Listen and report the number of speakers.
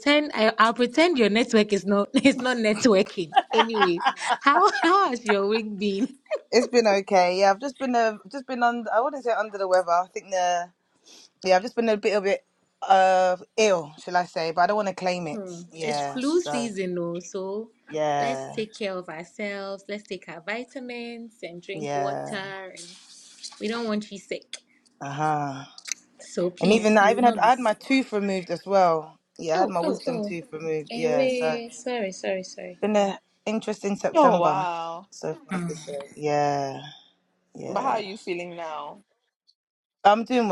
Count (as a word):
three